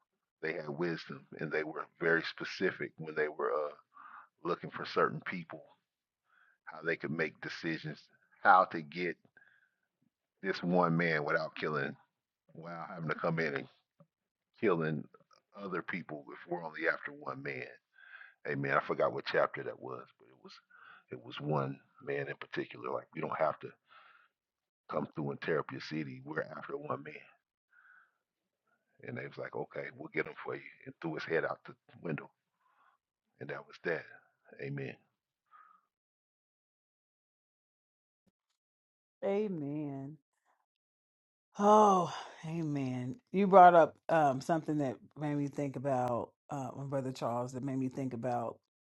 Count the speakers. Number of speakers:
2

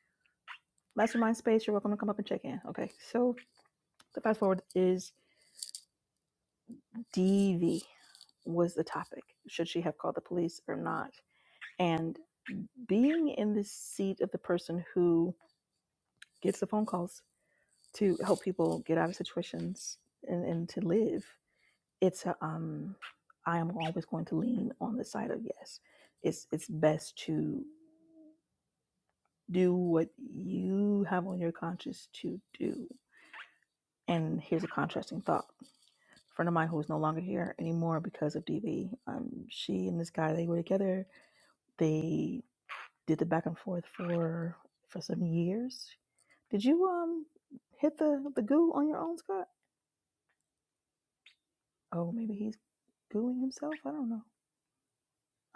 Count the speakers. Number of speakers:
1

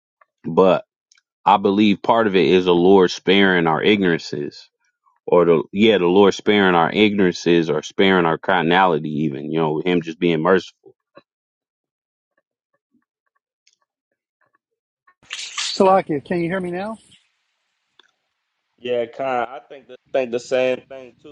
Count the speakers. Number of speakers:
3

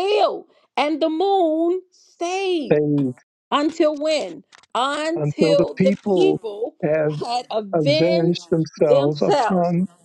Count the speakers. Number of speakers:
2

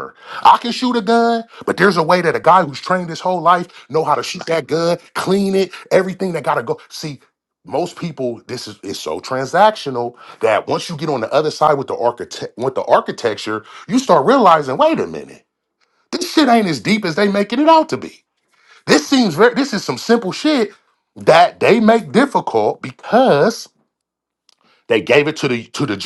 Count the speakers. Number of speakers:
1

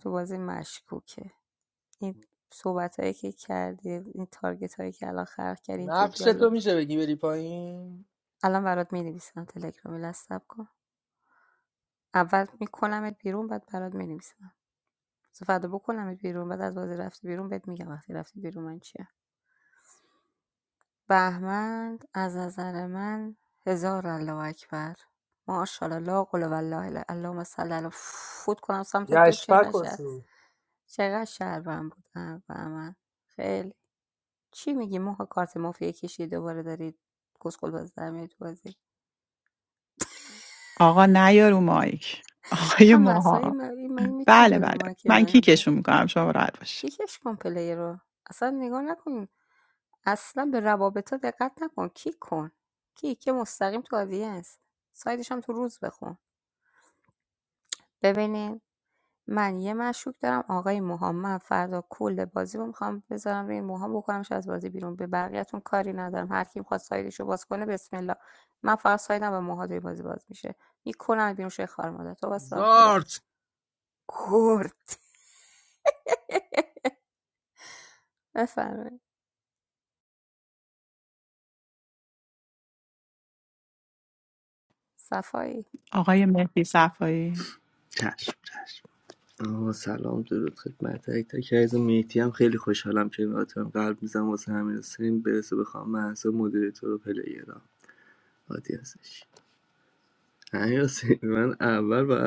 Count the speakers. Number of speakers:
4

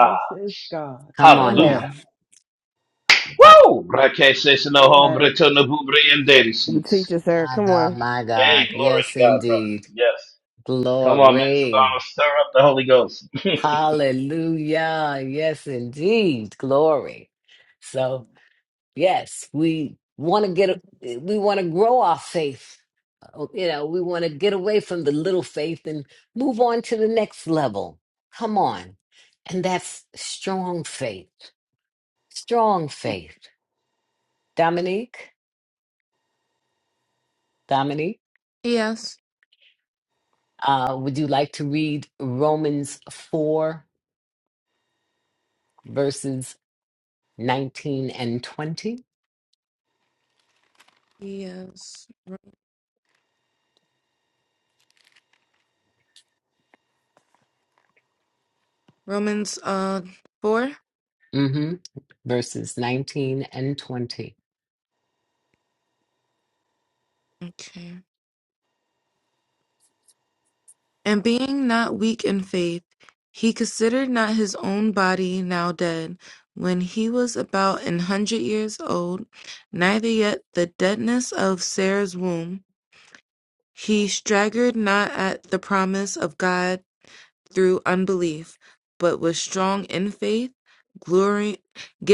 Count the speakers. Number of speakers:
5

